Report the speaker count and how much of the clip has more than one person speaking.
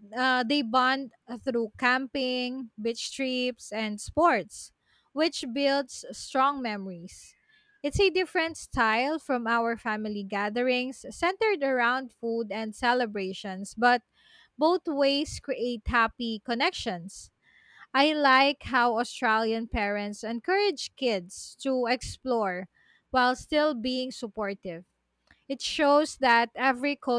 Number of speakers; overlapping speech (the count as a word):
one, no overlap